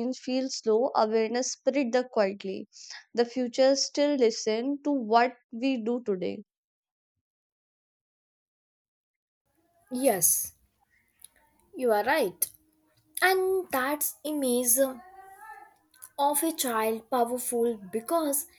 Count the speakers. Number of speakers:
2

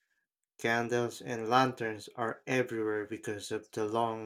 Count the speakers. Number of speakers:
1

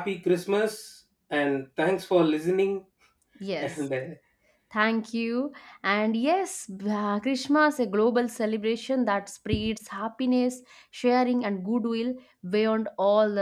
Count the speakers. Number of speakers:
2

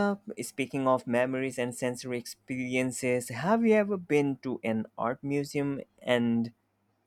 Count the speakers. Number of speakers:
1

